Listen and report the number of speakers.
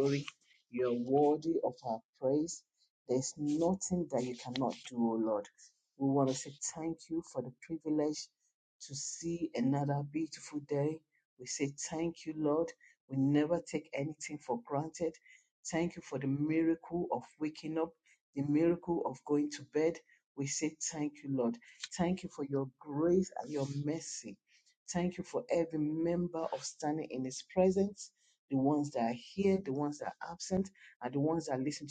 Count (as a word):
one